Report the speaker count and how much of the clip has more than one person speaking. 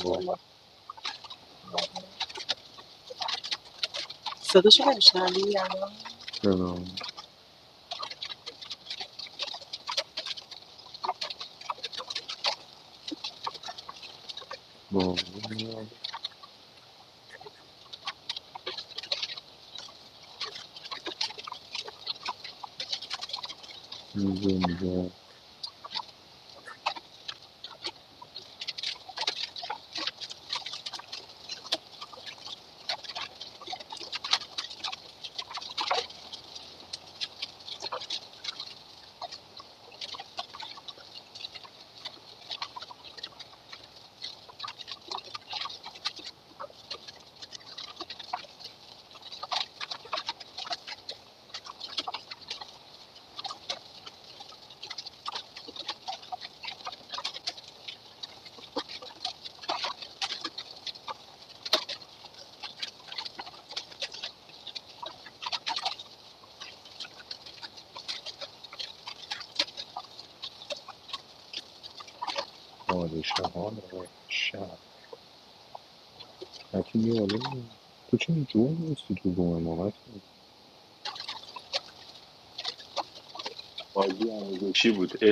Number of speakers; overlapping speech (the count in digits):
3, no overlap